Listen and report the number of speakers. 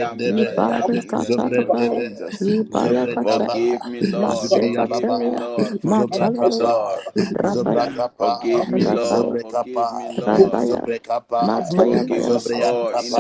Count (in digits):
3